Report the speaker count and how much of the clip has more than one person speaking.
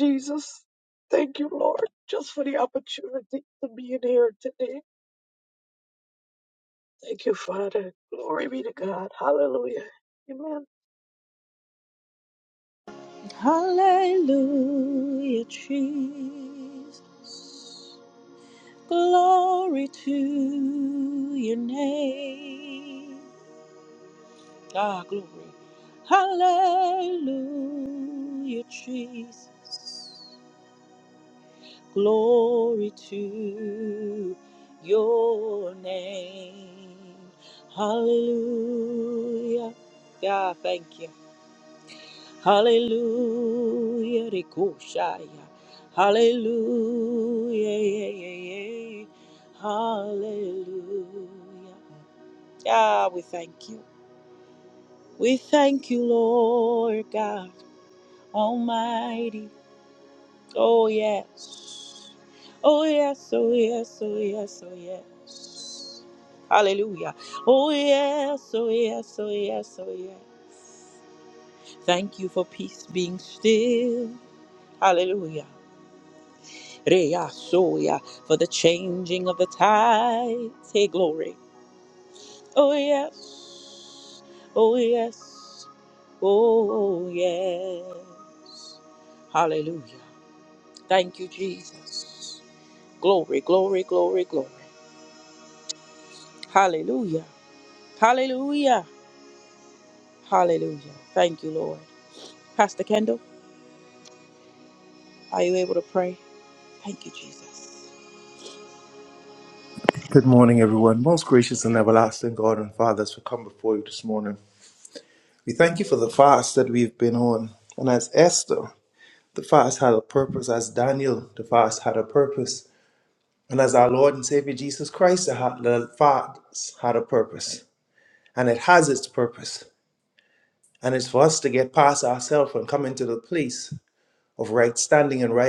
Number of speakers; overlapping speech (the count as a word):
three, no overlap